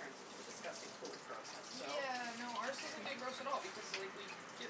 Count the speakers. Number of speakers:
two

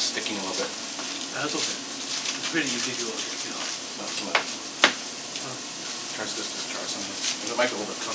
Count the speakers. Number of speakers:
two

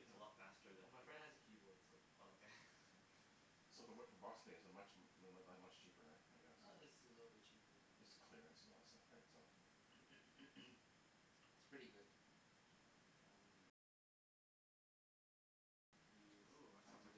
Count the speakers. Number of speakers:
four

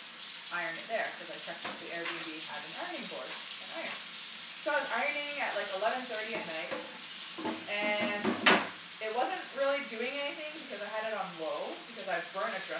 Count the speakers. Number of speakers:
one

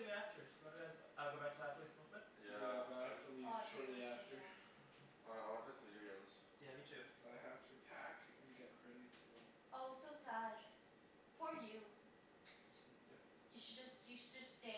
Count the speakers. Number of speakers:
four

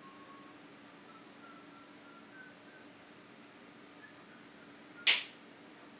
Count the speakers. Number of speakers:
zero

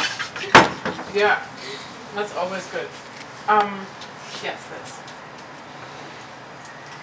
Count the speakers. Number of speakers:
one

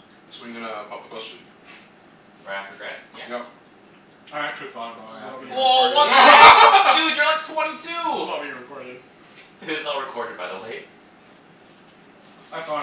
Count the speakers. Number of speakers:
four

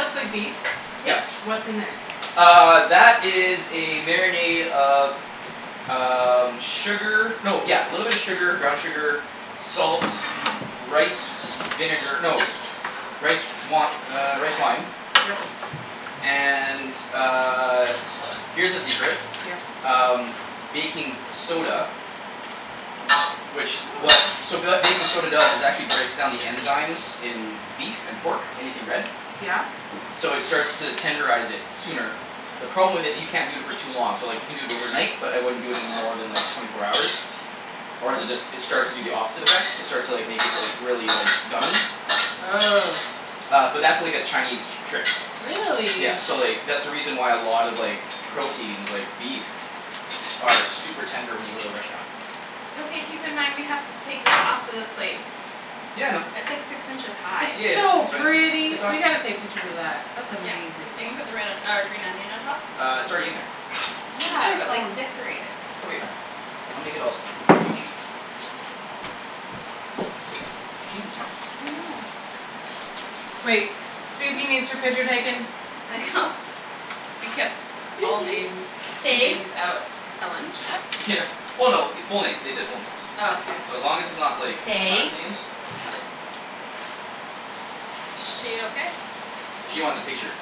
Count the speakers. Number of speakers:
three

